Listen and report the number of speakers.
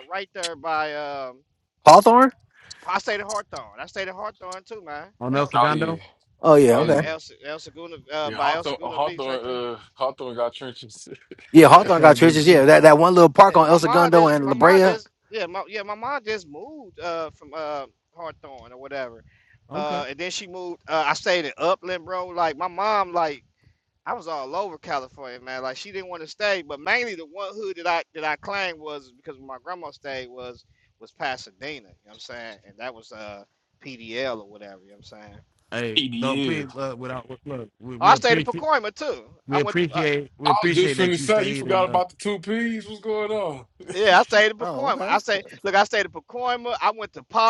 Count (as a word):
four